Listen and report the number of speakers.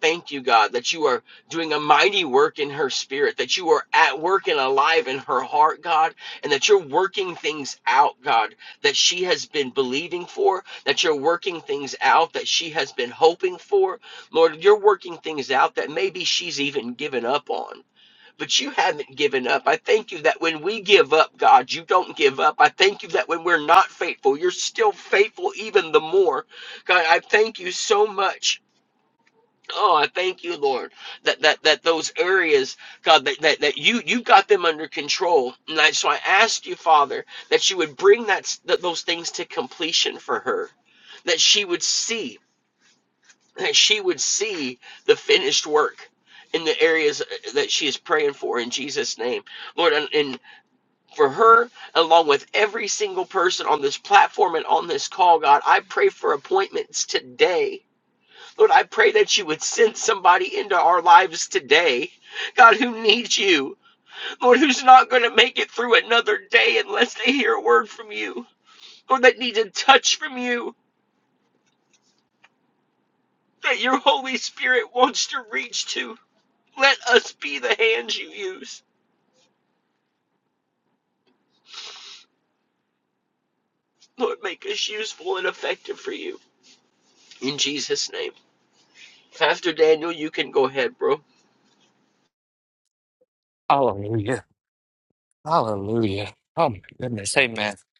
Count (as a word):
two